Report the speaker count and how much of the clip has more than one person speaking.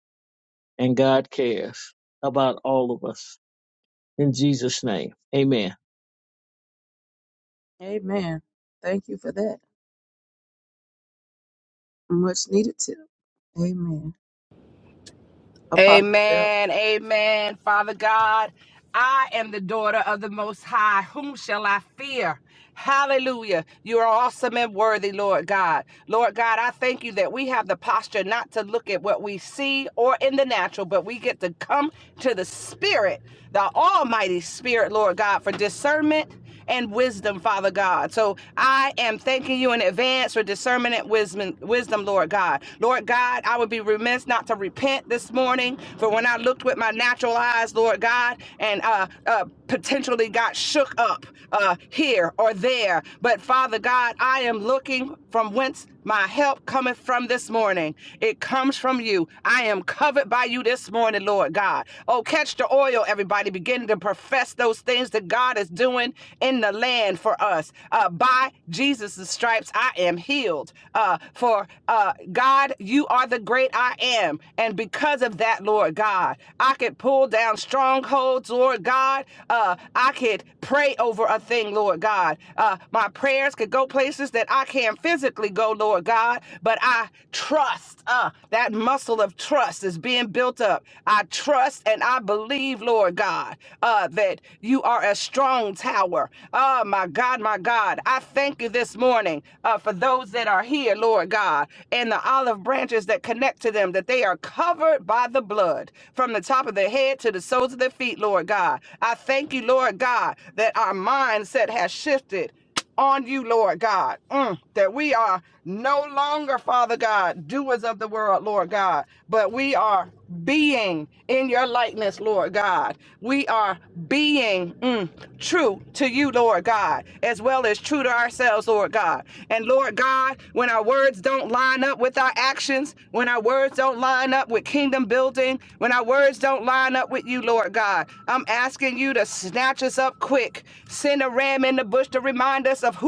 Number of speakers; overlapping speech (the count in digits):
3, about 1%